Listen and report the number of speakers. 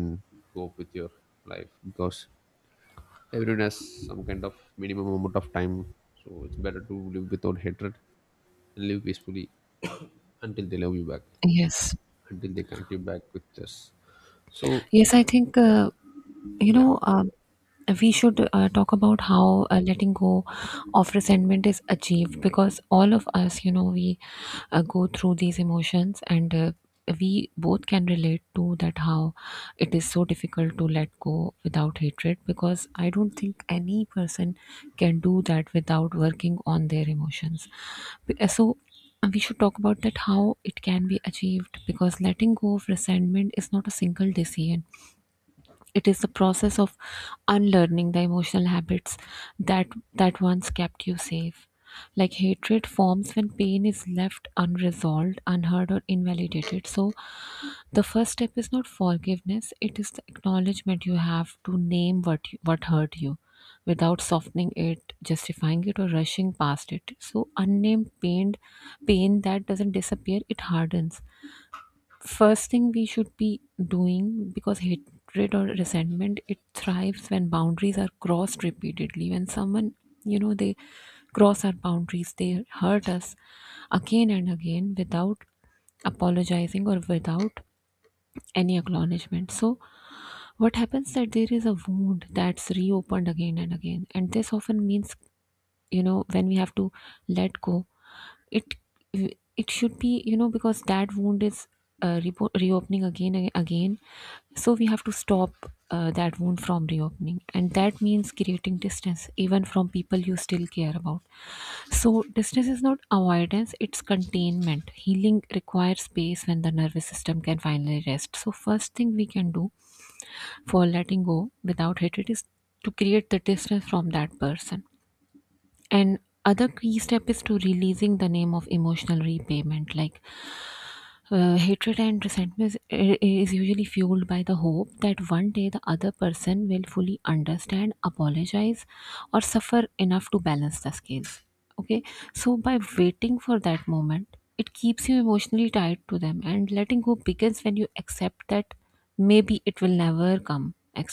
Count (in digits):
2